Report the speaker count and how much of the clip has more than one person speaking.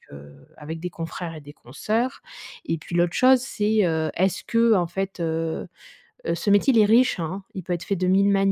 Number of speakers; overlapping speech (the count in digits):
1, no overlap